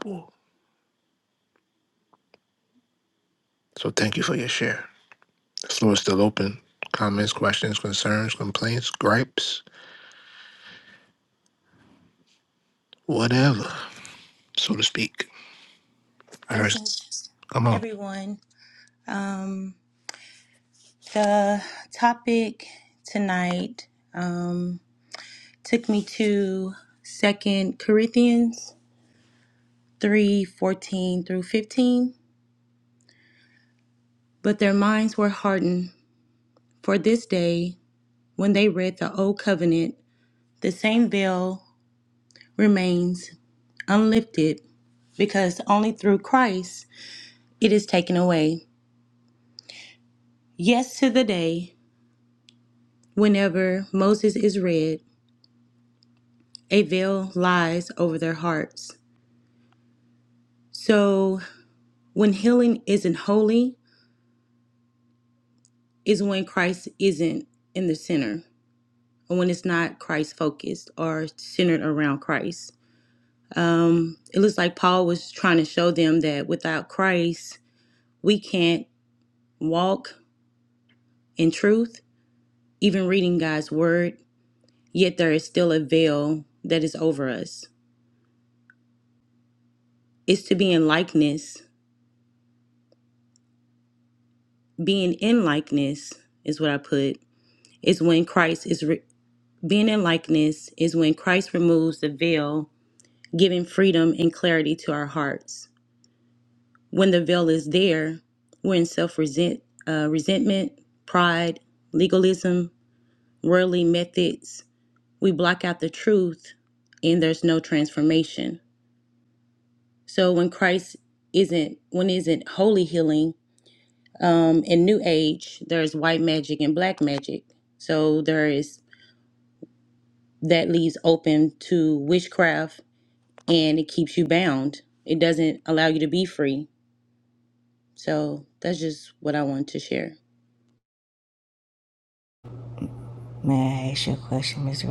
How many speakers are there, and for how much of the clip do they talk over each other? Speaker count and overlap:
three, under 1%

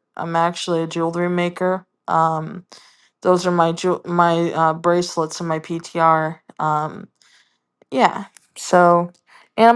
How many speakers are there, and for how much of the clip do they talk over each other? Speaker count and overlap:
one, no overlap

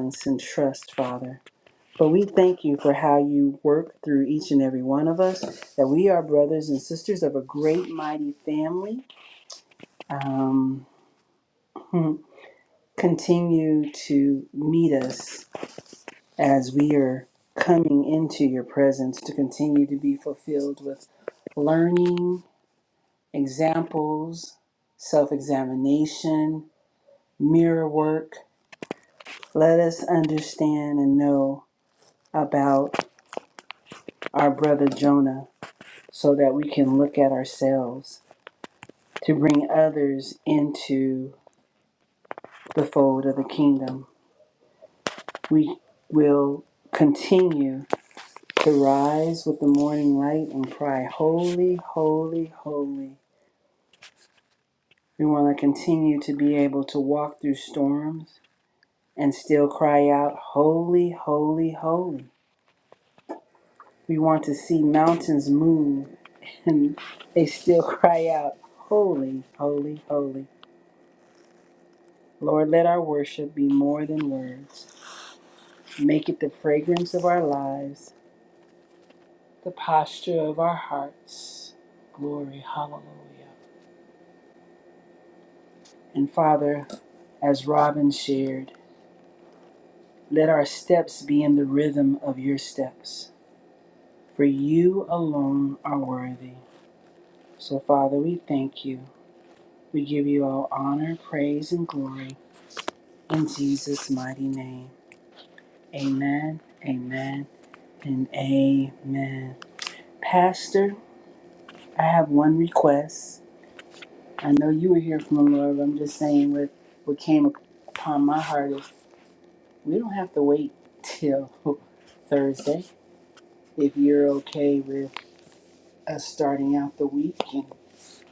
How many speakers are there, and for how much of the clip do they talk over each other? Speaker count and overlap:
one, no overlap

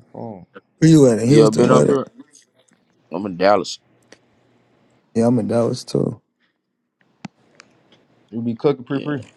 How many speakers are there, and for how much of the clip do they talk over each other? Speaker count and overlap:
three, about 10%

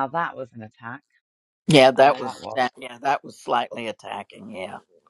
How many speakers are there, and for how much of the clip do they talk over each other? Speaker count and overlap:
two, about 13%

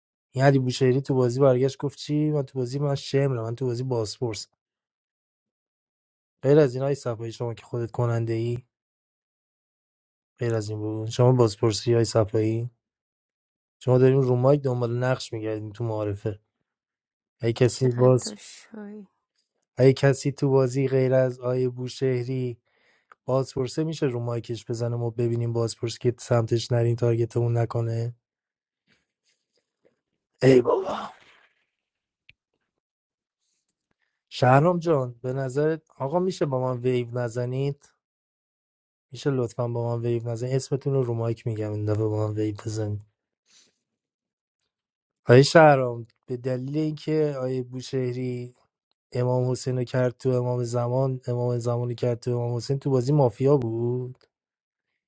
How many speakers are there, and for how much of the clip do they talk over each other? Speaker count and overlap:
two, about 1%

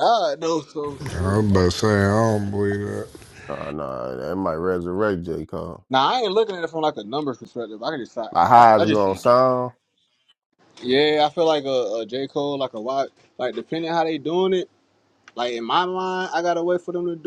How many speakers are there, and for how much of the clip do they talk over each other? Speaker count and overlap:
three, about 7%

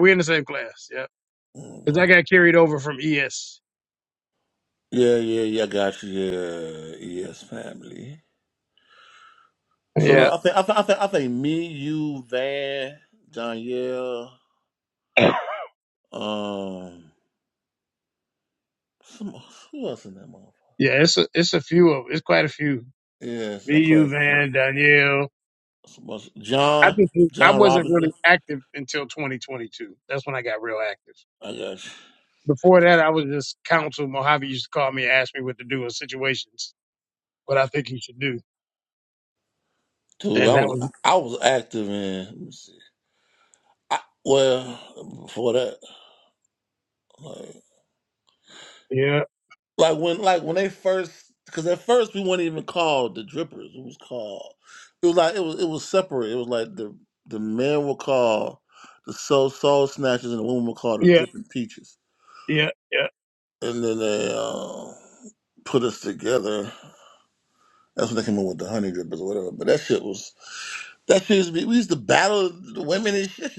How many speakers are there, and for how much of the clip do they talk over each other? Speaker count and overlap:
two, about 4%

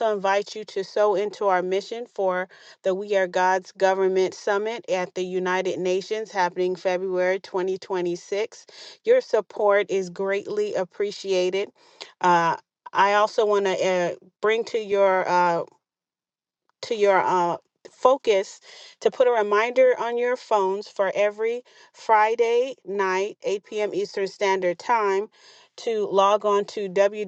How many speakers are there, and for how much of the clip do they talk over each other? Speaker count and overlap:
one, no overlap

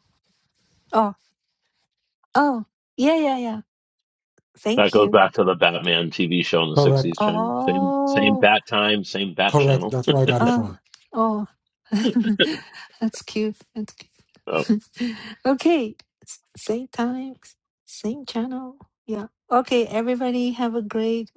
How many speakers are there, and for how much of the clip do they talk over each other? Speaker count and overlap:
three, about 13%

